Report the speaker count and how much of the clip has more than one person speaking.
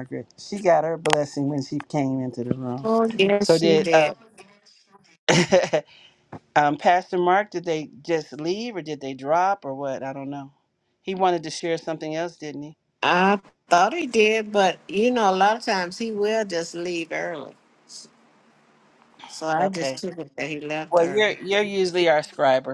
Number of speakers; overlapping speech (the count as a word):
two, about 6%